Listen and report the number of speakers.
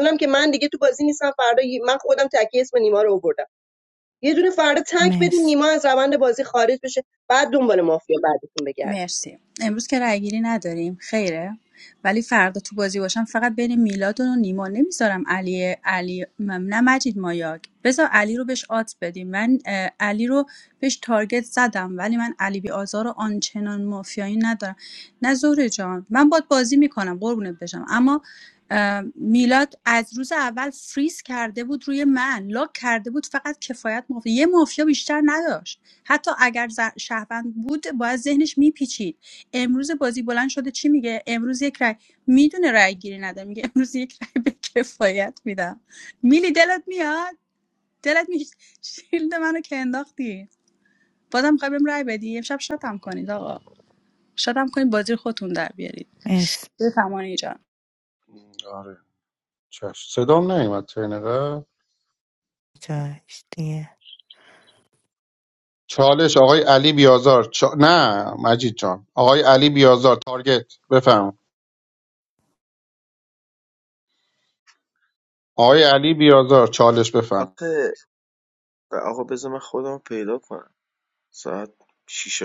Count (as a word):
five